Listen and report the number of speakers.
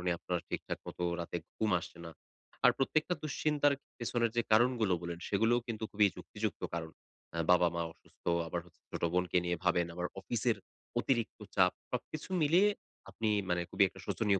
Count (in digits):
1